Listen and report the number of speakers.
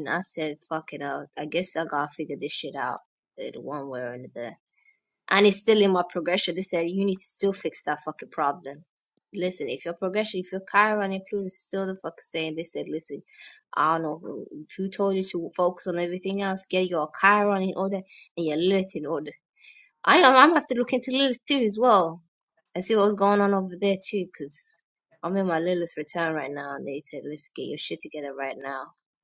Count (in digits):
1